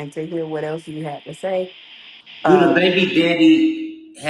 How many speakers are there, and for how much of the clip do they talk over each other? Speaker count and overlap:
two, about 9%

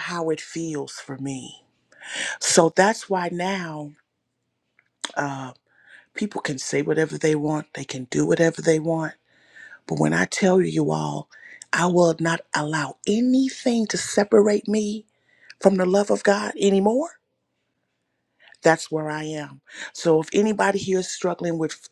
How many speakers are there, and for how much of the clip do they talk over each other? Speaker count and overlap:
one, no overlap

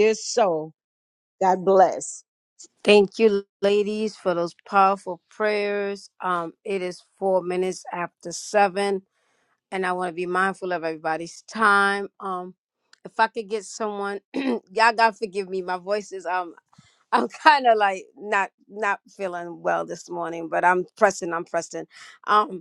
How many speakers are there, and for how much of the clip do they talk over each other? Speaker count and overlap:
two, no overlap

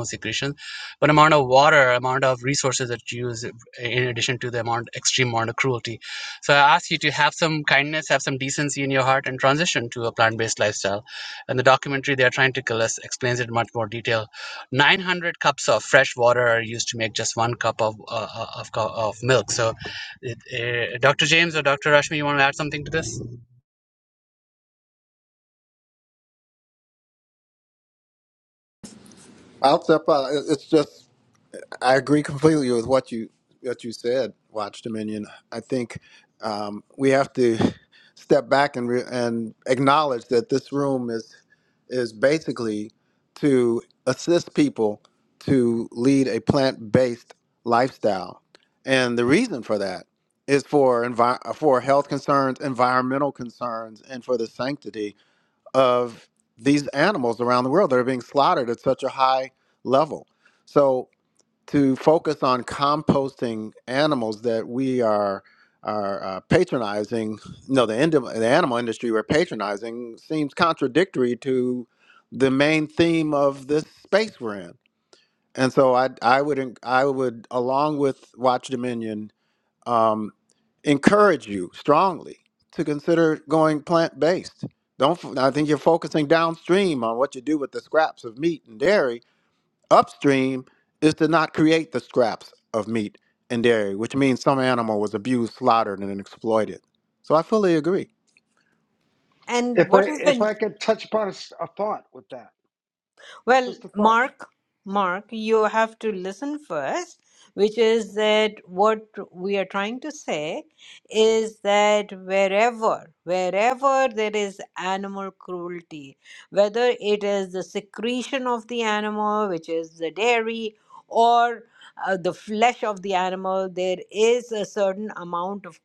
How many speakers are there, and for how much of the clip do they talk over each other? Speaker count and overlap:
four, about 1%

